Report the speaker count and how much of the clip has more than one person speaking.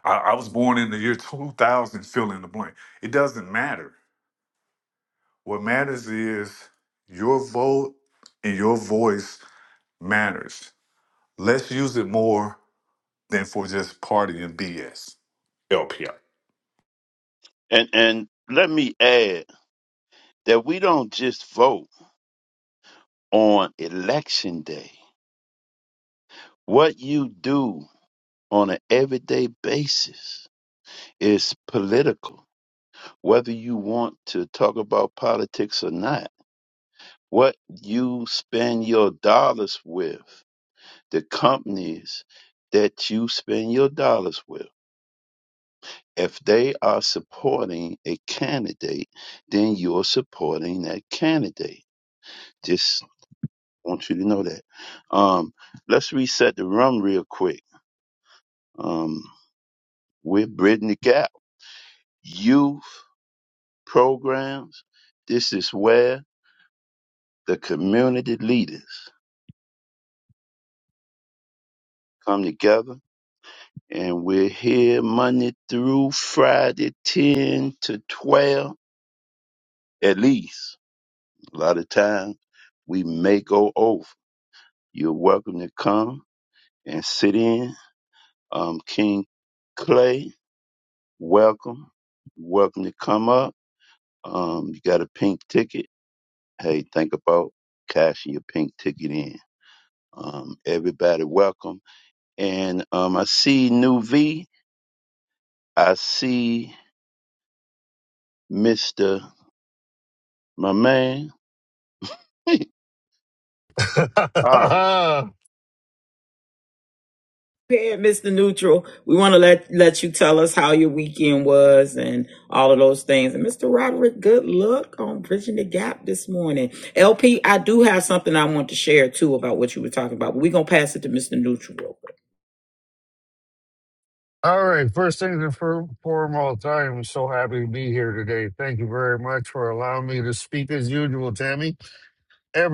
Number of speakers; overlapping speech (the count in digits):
4, under 1%